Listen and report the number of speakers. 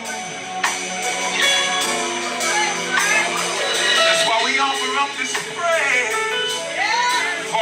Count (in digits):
0